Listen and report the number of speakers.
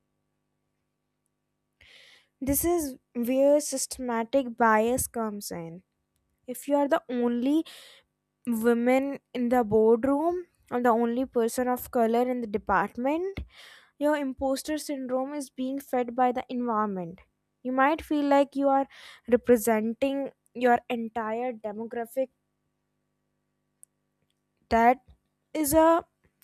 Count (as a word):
one